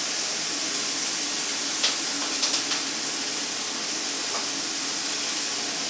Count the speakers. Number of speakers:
0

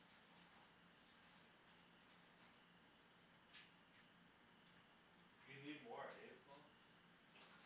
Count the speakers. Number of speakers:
1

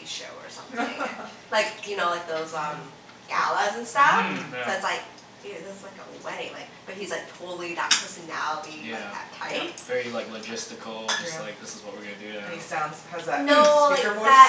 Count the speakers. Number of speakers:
3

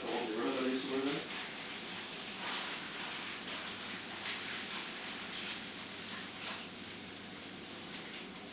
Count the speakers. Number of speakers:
1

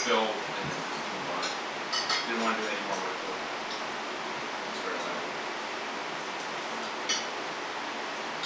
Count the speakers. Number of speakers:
1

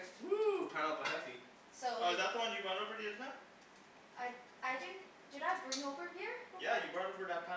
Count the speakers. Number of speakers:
3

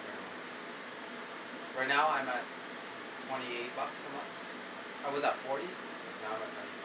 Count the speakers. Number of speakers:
1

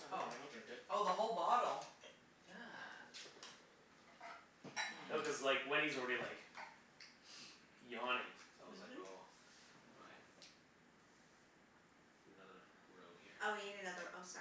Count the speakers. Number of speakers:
4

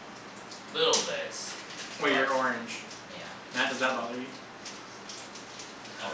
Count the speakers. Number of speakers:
2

